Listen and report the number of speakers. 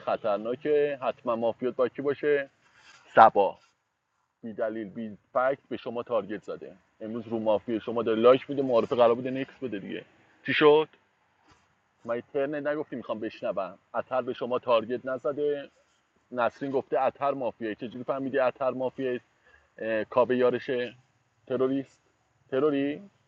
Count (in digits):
1